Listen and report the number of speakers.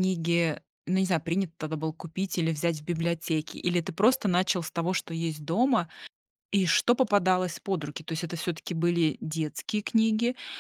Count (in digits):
1